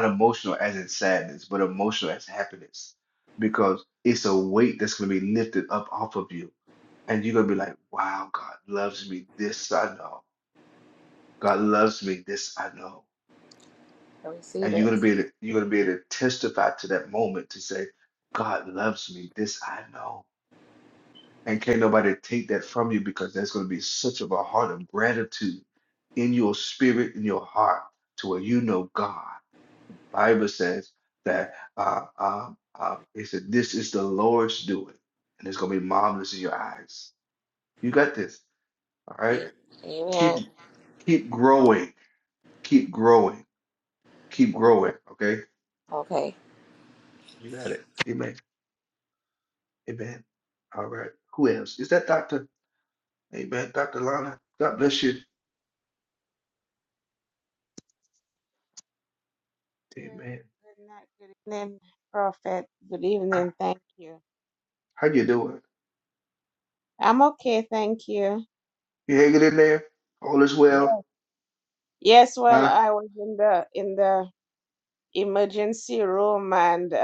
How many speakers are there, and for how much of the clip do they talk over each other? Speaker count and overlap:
three, about 2%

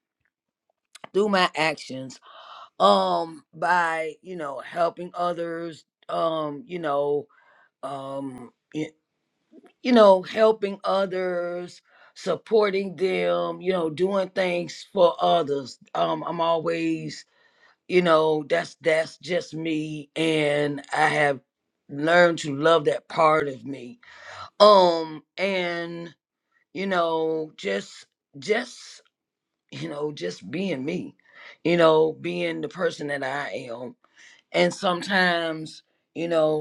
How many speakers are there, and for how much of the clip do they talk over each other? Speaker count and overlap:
one, no overlap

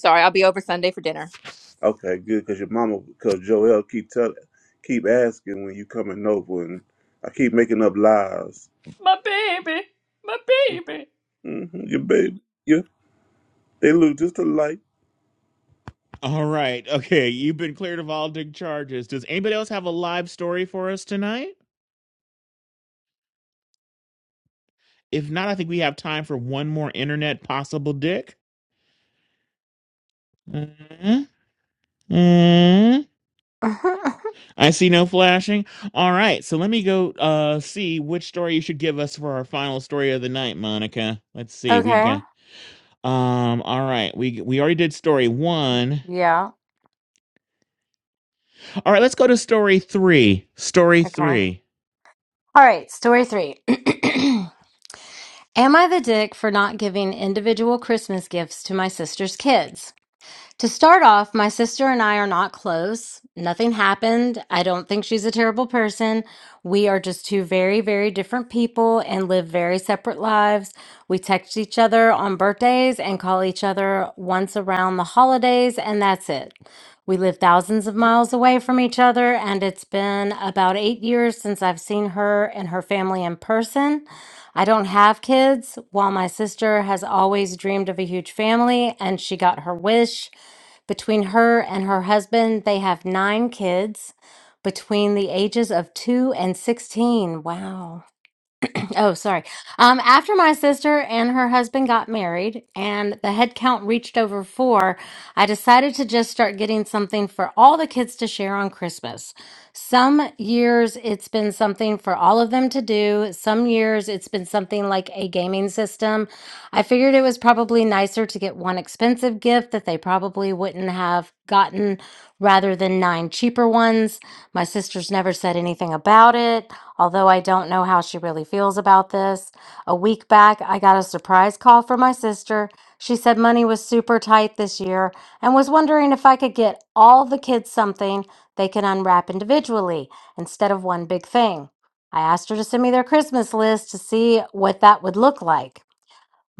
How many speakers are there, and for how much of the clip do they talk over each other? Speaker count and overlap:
five, about 1%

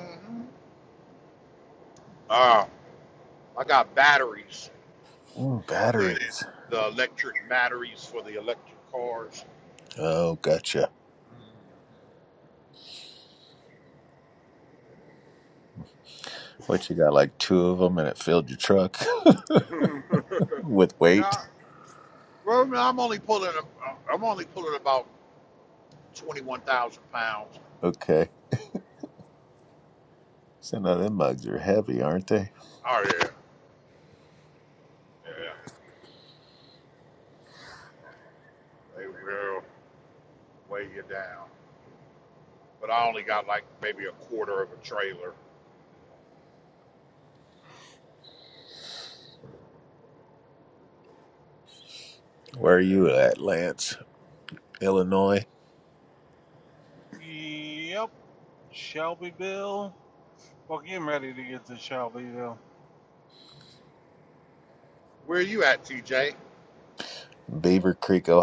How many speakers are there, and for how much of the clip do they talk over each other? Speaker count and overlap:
three, about 1%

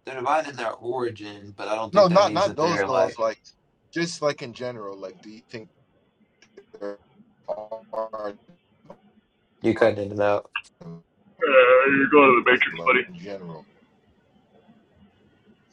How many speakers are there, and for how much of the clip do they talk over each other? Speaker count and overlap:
three, about 11%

